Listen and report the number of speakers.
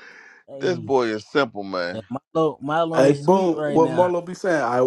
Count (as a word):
three